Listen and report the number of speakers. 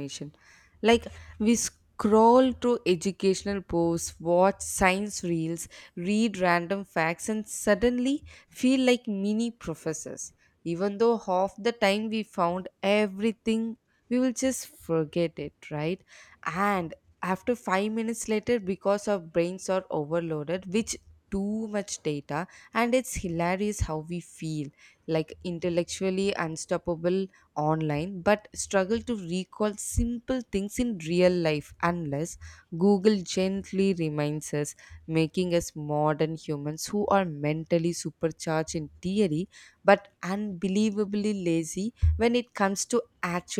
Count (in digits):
1